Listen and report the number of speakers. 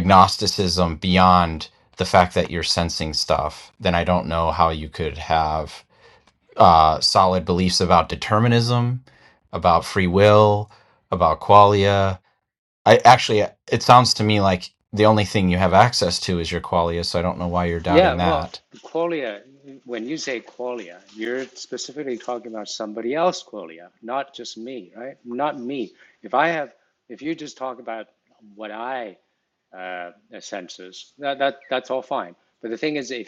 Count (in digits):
2